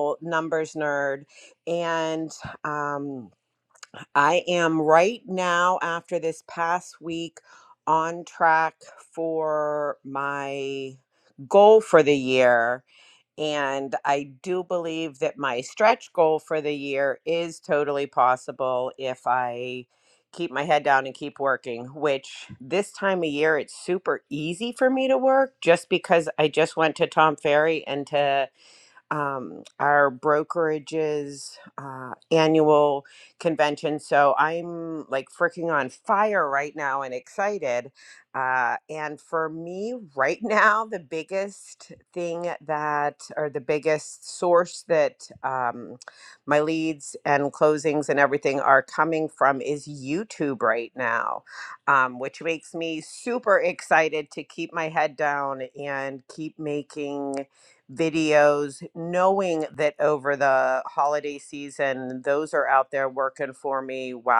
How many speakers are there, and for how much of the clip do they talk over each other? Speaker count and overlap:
1, no overlap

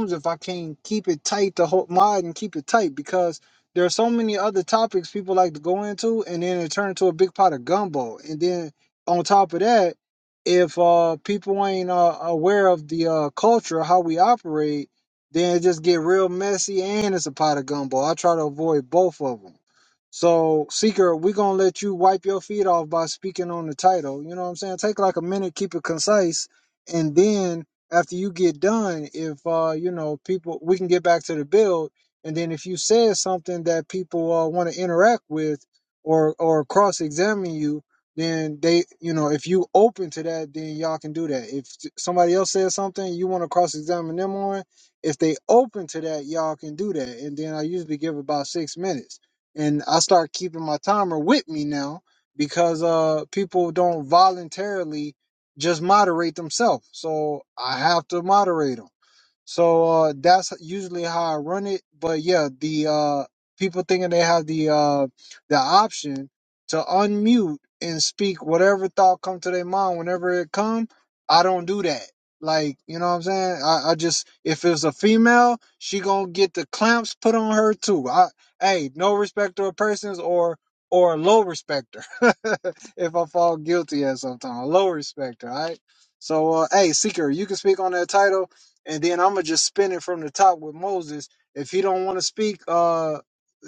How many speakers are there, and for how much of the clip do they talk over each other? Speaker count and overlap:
1, no overlap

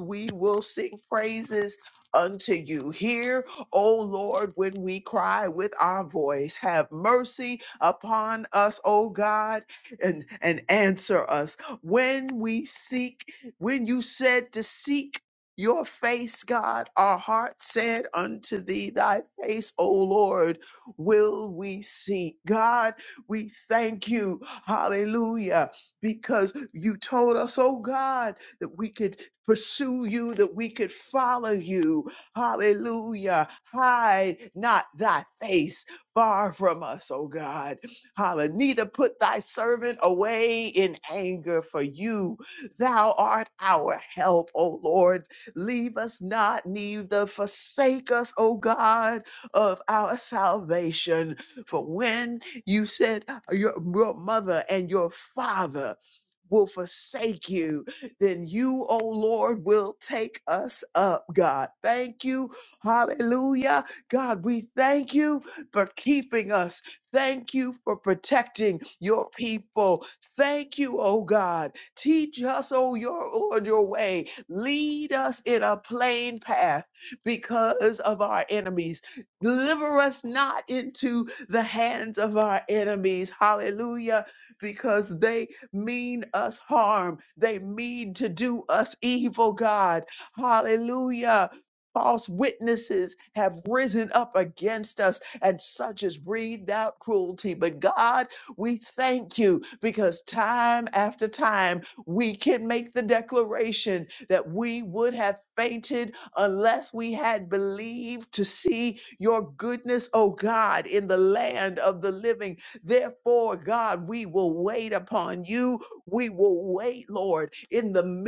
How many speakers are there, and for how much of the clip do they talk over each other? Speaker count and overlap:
1, no overlap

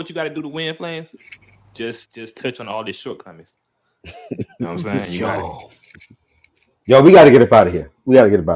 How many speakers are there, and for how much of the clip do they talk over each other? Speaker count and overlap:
2, about 4%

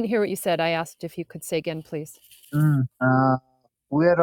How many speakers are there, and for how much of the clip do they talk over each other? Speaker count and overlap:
2, no overlap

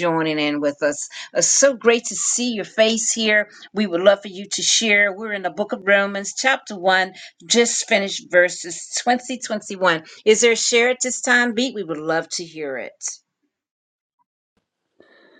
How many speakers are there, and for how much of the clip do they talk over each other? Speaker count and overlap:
1, no overlap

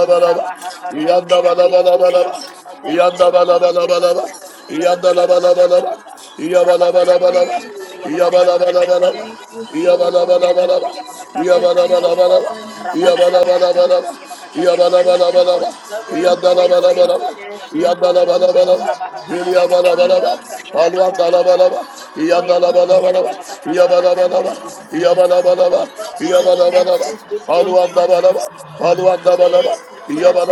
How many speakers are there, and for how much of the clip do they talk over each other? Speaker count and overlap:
3, about 74%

